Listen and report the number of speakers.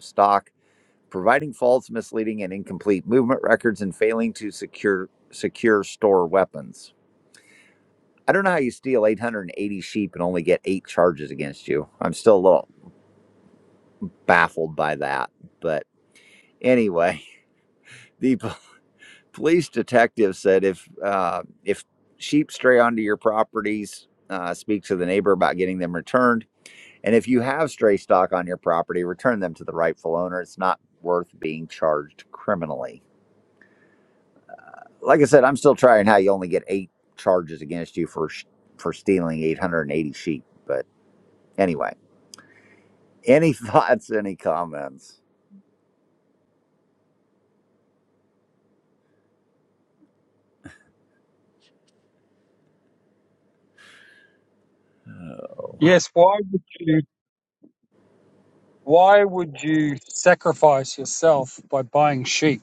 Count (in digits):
2